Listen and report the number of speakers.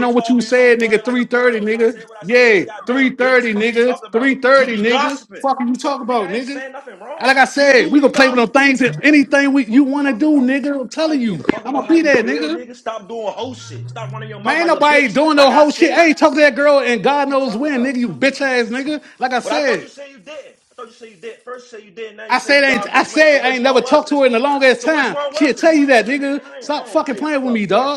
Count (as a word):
two